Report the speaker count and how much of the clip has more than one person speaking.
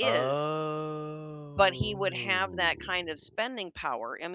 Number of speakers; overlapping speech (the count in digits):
2, about 11%